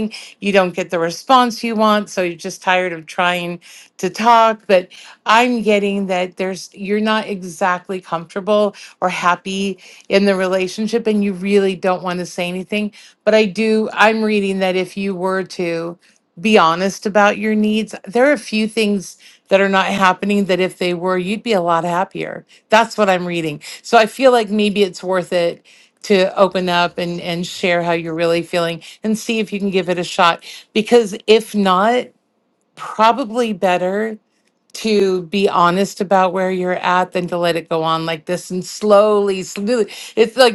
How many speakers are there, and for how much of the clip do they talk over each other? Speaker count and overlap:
one, no overlap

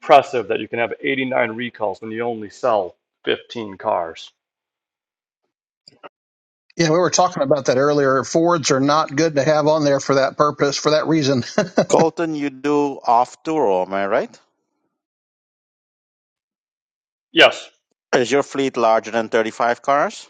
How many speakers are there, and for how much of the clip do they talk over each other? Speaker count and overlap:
three, no overlap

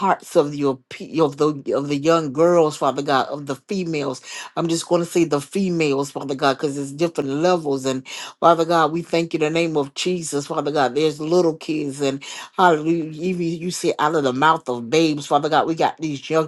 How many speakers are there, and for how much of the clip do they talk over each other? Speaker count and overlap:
one, no overlap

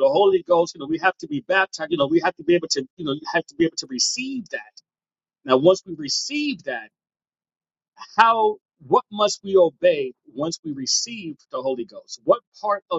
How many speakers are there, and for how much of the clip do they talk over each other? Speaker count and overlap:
one, no overlap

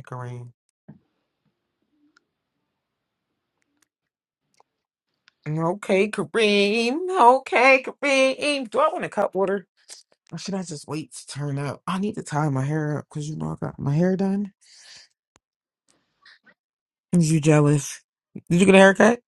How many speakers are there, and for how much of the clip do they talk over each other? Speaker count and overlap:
one, no overlap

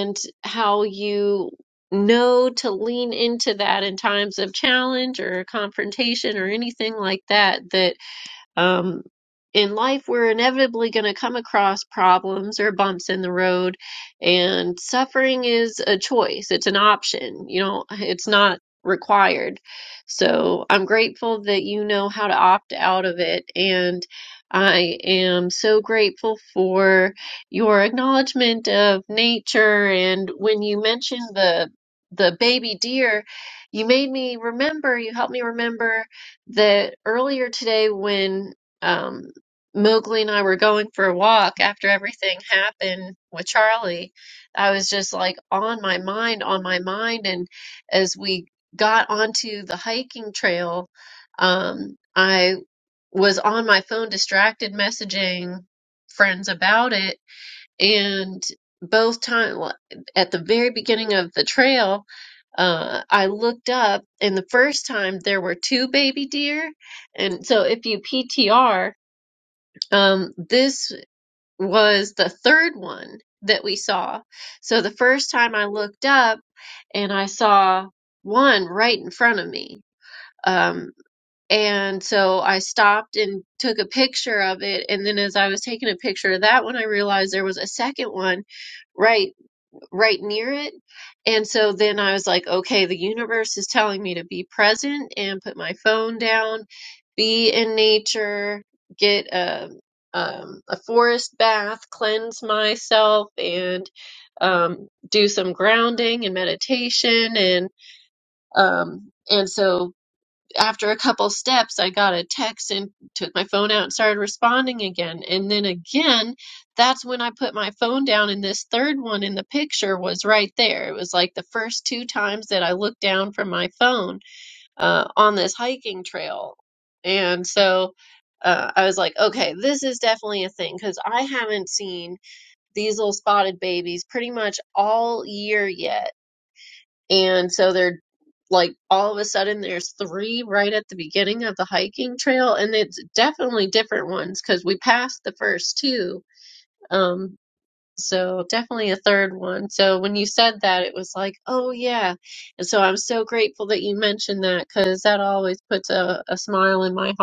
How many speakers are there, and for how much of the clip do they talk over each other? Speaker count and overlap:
one, no overlap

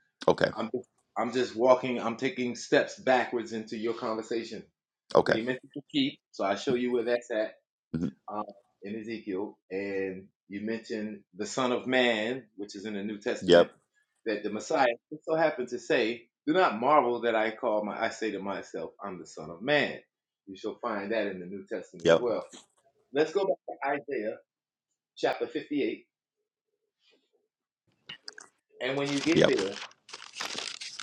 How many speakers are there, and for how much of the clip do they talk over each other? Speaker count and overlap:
two, about 3%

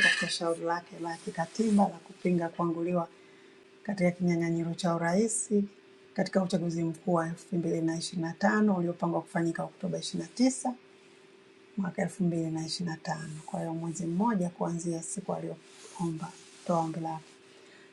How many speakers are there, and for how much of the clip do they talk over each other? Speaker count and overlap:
one, no overlap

